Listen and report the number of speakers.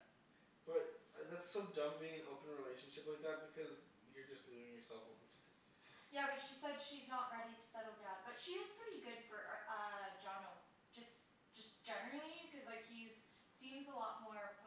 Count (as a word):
two